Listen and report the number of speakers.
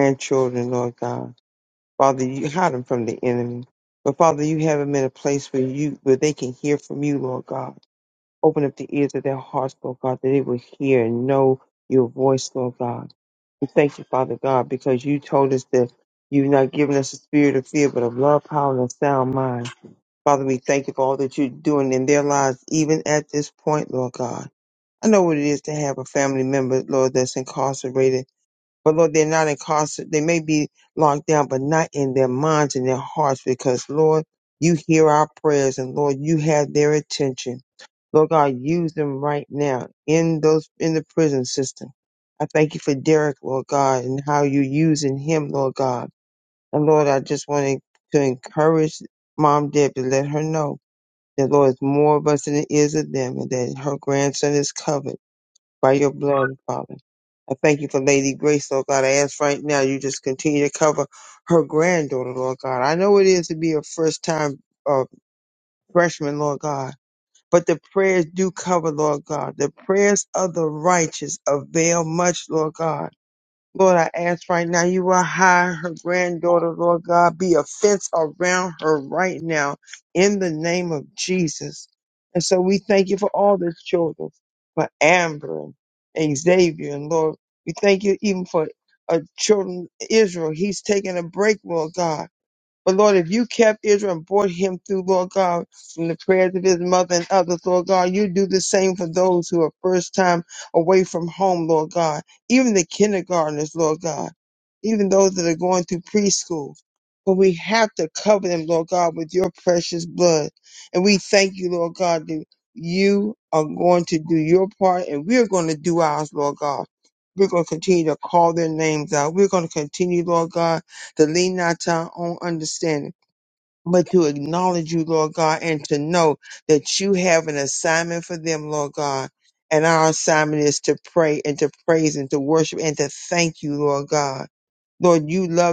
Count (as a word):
one